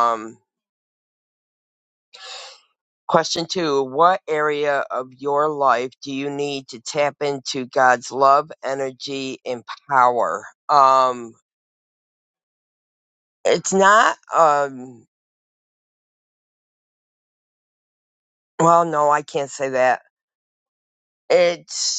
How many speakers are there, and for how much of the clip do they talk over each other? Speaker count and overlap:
one, no overlap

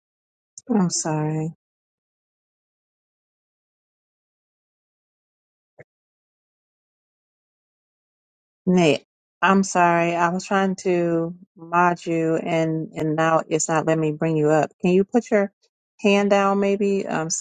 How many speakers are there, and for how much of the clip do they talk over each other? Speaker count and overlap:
one, no overlap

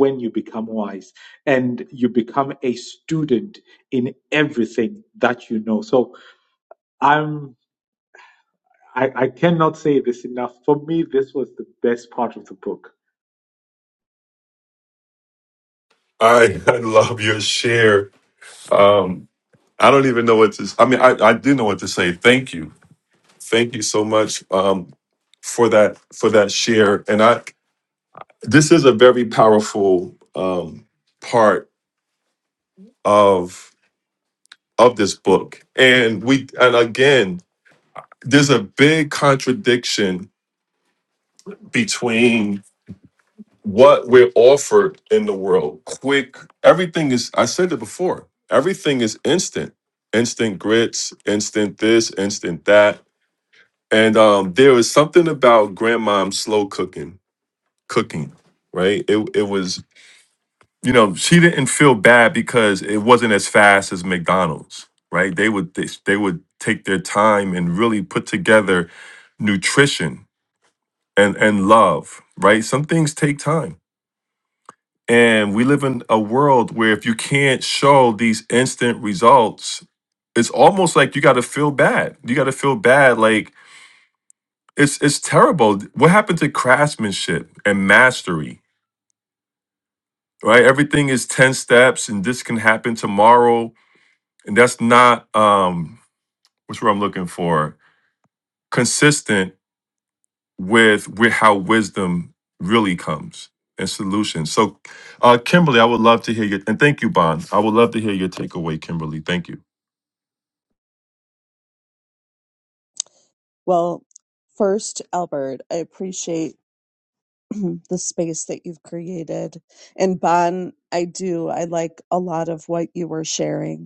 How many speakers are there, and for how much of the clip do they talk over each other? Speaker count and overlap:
three, no overlap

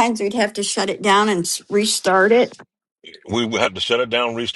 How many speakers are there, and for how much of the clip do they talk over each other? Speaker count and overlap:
two, no overlap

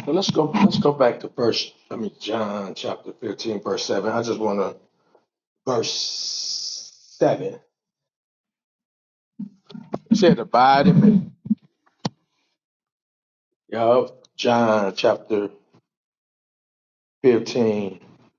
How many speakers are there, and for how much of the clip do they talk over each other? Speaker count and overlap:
one, no overlap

